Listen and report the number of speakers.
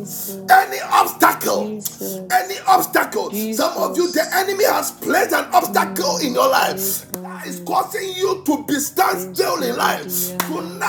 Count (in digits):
2